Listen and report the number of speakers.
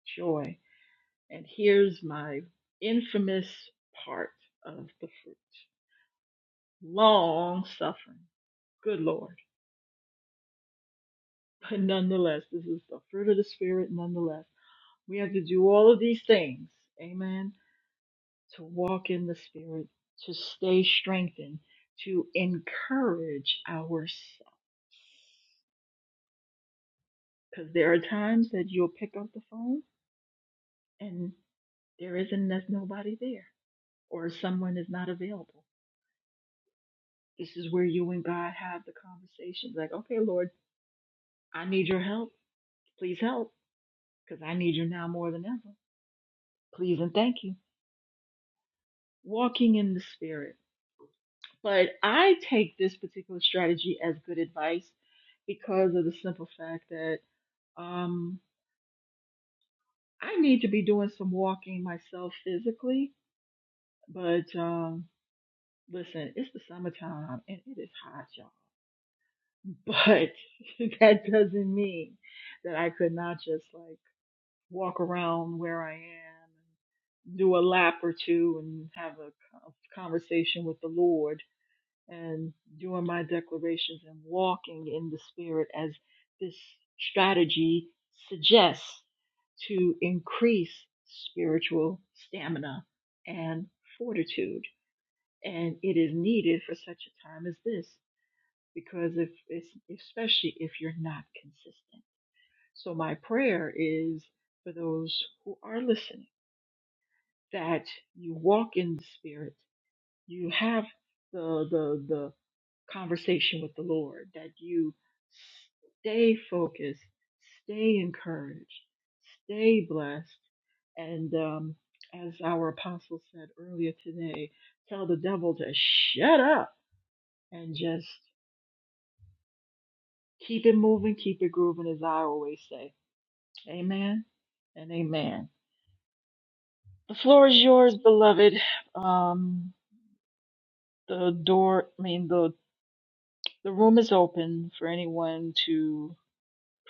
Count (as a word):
one